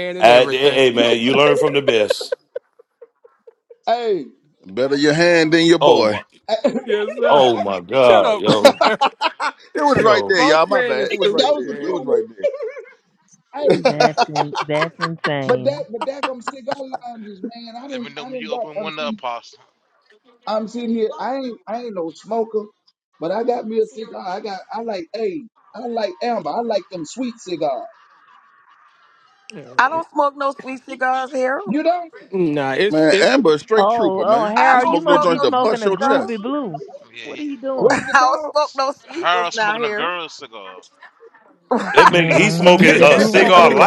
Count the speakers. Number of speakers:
7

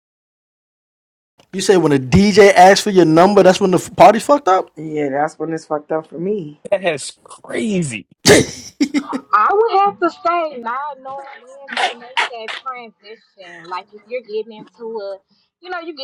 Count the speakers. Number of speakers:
4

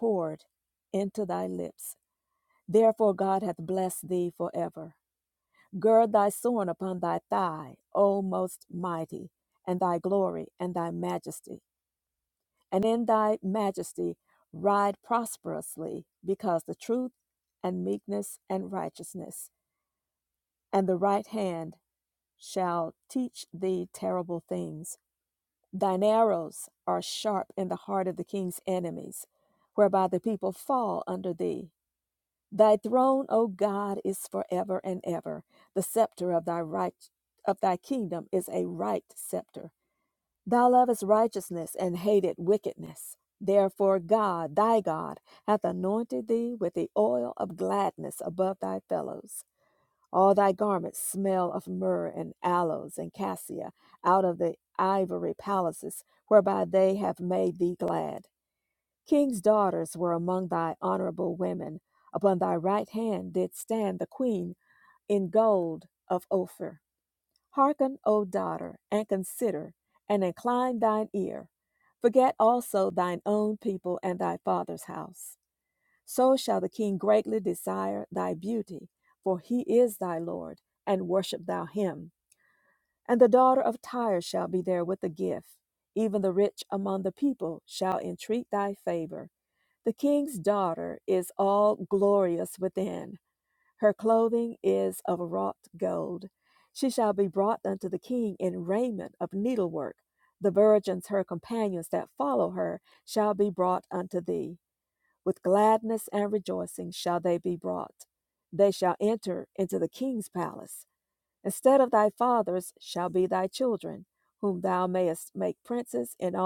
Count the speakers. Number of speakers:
1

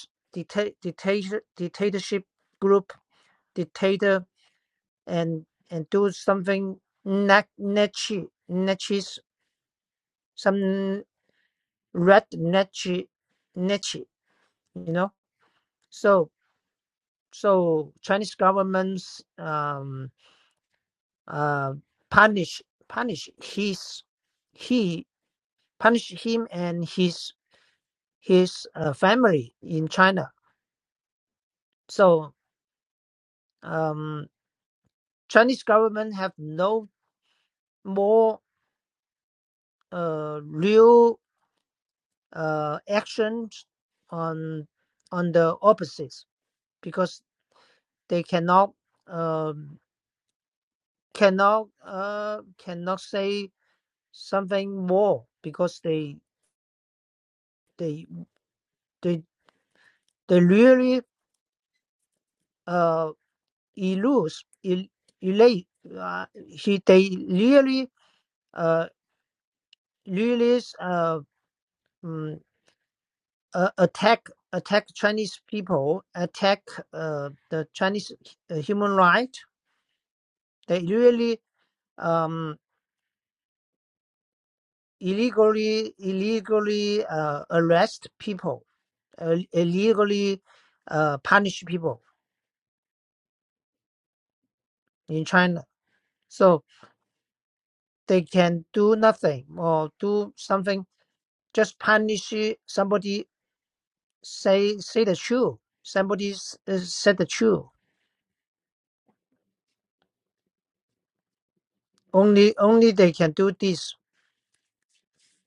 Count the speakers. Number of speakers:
1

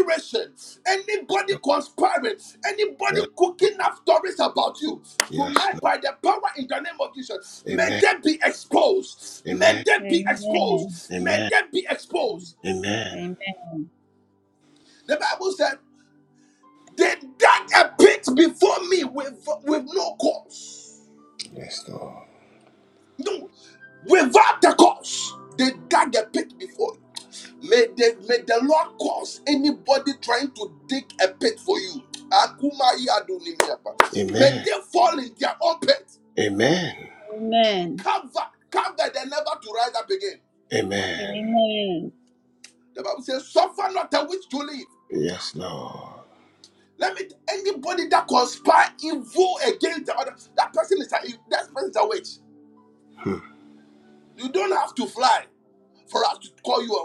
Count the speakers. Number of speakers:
3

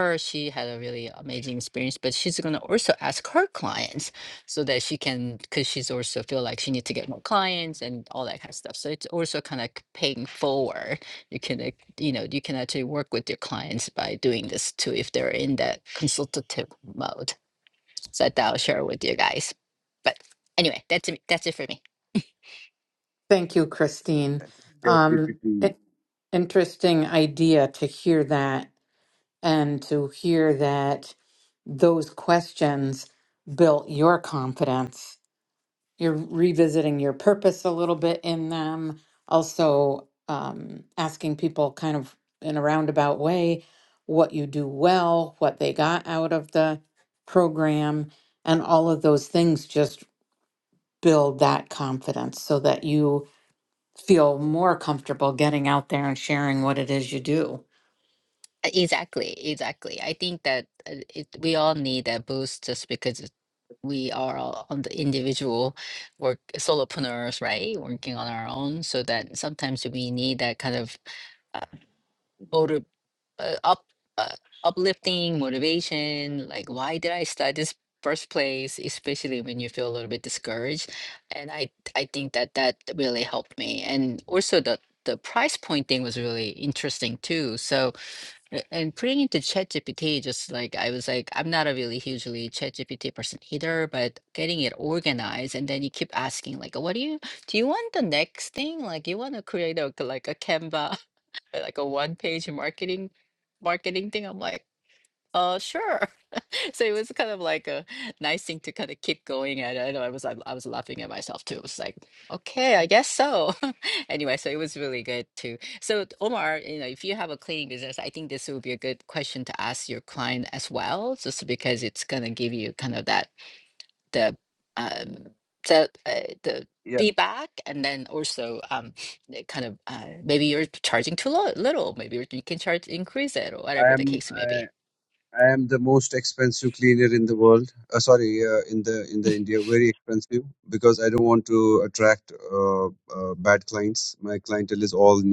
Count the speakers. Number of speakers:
3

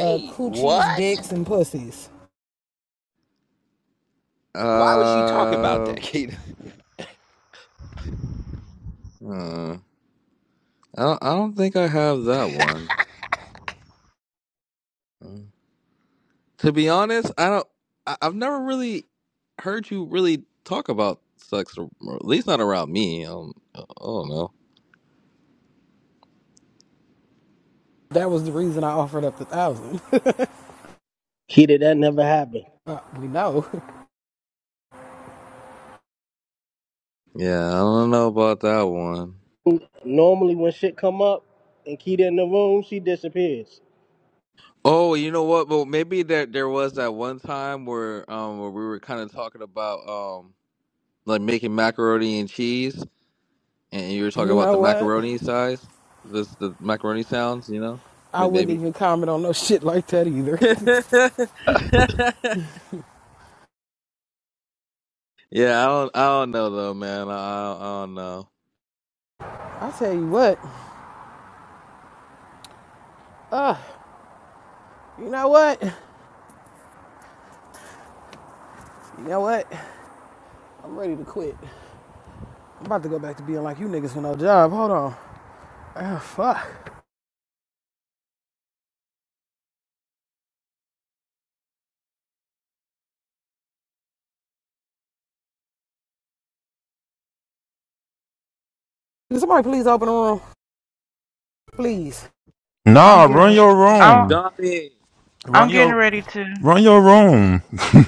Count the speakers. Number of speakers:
6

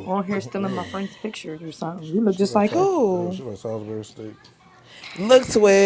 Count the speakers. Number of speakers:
3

